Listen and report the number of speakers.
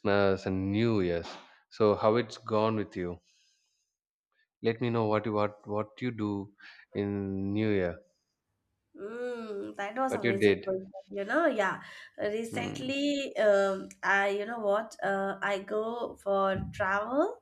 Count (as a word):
two